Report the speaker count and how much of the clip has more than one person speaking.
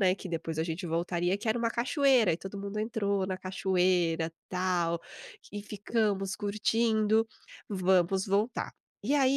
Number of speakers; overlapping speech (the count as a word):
one, no overlap